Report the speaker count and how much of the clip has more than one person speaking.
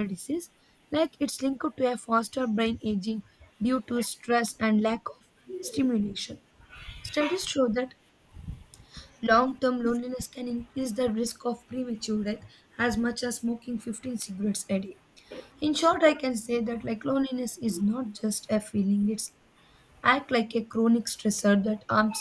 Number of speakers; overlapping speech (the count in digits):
1, no overlap